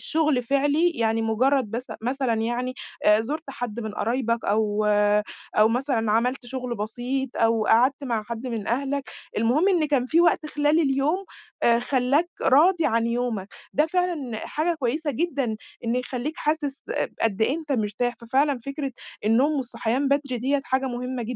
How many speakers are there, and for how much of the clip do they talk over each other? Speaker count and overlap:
1, no overlap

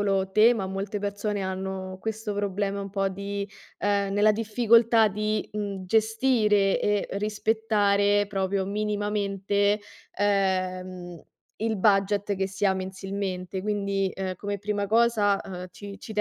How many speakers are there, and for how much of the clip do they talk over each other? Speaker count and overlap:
1, no overlap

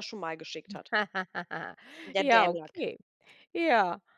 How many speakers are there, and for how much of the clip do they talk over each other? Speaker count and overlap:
2, about 12%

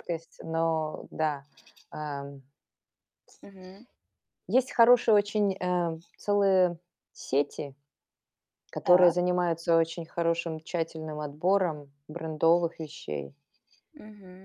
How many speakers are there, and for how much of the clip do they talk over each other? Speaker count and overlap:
2, about 2%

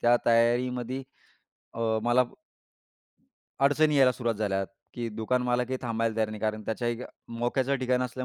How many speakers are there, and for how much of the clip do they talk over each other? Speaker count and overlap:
1, no overlap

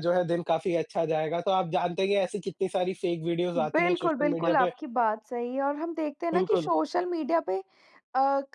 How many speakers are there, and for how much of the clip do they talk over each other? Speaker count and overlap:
2, about 18%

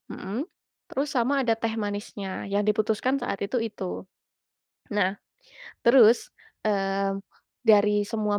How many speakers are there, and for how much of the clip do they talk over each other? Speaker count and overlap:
1, no overlap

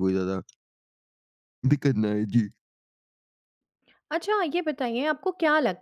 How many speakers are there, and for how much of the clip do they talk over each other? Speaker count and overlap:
2, no overlap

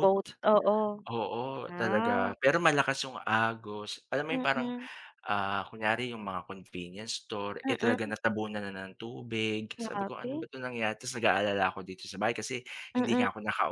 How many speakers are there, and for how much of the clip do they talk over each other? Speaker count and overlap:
2, about 18%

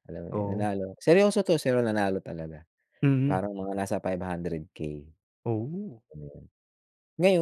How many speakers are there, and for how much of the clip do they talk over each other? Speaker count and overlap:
2, about 6%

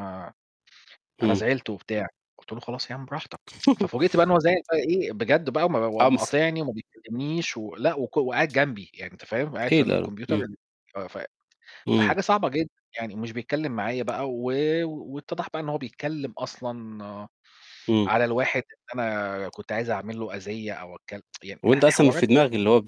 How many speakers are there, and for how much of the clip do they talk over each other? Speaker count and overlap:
2, about 10%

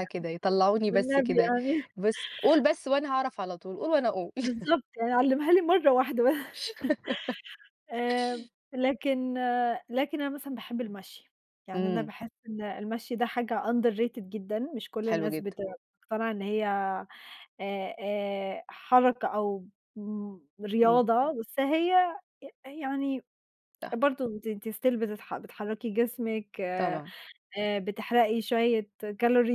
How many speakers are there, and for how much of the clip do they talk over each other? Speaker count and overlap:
2, about 6%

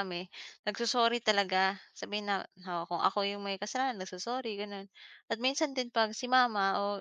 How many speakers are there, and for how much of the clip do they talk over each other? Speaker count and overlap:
1, no overlap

